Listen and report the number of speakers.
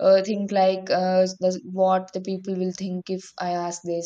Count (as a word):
one